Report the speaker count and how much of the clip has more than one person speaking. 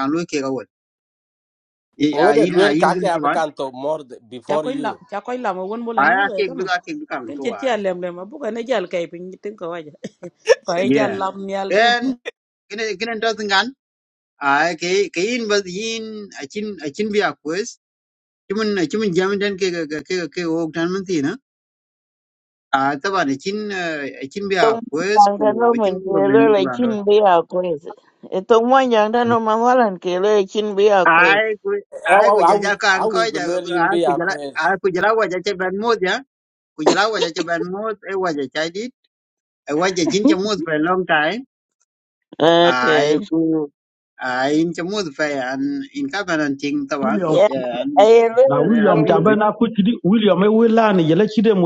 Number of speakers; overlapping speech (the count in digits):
5, about 19%